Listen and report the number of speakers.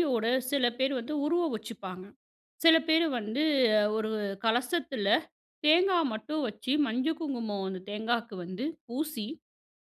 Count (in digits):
1